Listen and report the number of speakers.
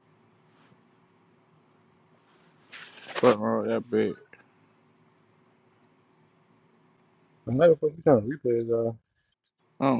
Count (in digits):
2